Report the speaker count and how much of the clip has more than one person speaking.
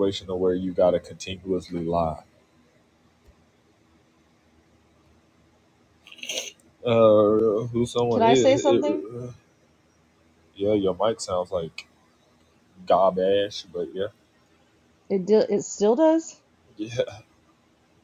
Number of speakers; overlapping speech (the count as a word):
two, about 5%